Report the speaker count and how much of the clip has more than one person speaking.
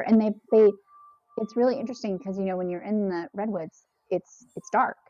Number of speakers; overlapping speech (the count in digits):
1, no overlap